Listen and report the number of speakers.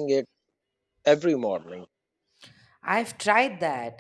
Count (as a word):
two